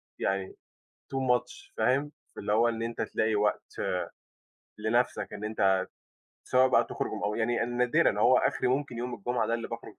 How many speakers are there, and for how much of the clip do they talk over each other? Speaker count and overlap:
one, no overlap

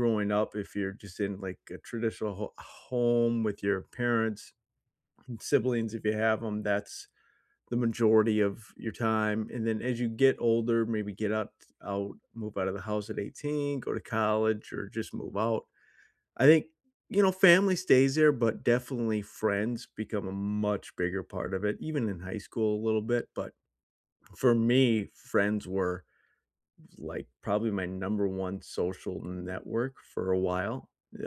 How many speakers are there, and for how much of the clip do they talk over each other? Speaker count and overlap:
one, no overlap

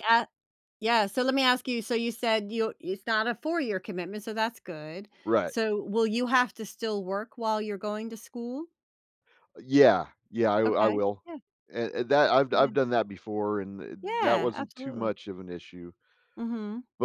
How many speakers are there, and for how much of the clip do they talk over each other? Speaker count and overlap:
two, about 10%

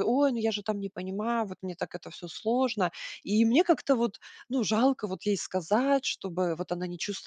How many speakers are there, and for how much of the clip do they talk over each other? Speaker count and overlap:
one, no overlap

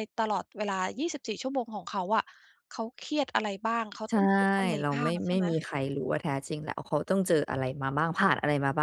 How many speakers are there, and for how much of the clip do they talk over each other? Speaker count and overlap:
two, about 10%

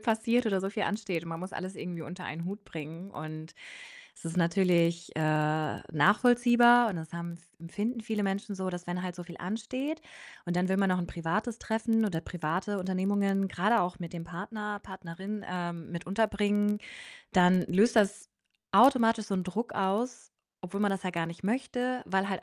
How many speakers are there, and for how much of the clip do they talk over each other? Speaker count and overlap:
one, no overlap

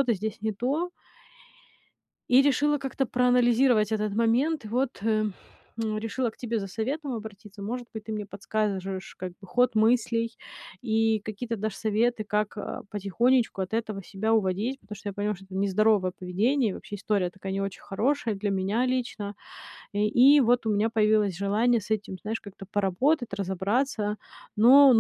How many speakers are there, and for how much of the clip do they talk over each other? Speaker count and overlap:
one, no overlap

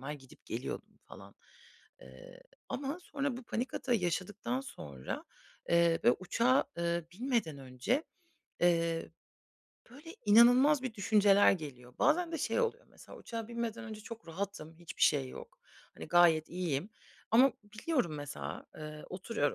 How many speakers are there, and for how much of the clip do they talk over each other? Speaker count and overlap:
one, no overlap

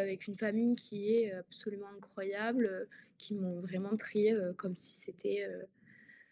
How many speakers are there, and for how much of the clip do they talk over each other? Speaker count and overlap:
one, no overlap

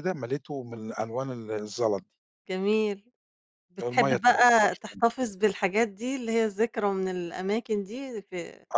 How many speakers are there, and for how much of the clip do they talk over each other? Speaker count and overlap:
two, about 14%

